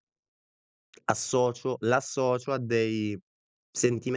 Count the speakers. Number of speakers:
1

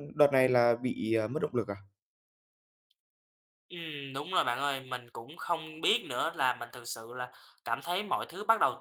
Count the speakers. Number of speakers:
2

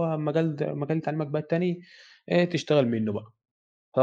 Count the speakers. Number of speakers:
1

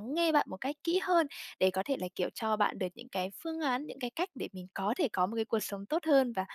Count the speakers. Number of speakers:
1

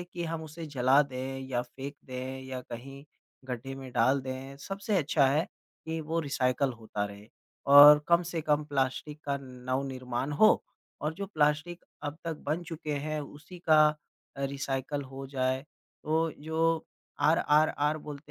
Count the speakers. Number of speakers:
1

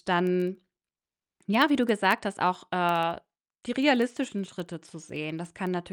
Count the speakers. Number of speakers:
1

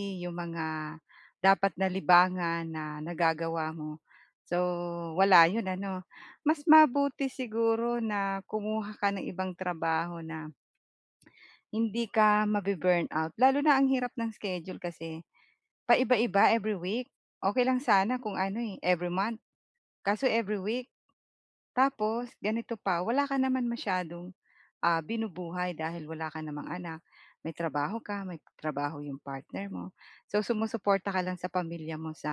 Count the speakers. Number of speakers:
1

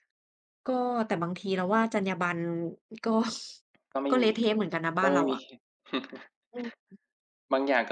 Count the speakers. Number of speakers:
2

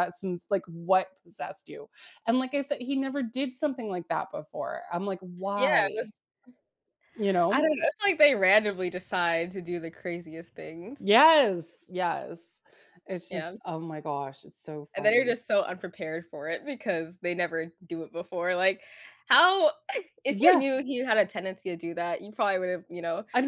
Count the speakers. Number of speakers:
2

